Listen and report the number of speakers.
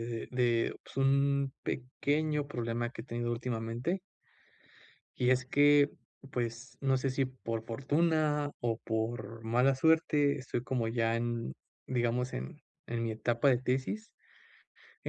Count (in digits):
1